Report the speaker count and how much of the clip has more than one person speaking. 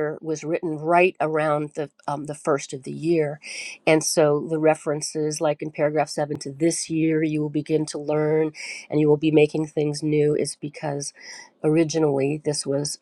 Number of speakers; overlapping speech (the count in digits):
1, no overlap